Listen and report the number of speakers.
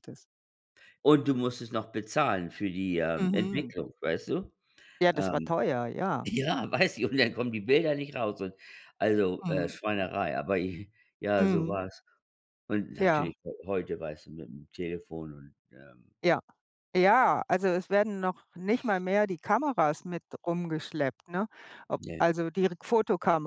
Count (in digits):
2